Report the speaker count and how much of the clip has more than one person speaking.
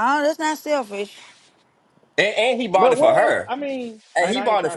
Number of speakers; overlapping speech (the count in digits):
3, about 29%